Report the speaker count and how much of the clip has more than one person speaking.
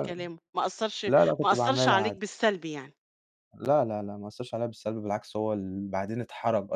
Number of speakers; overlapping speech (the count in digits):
2, about 14%